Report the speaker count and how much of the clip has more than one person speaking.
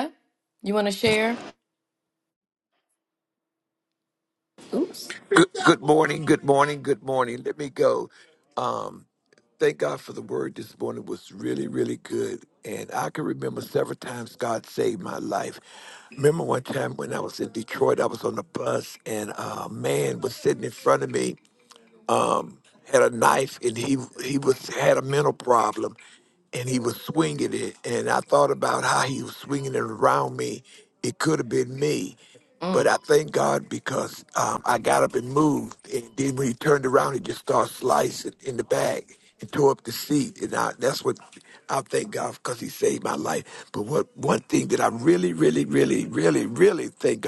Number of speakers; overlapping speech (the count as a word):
two, under 1%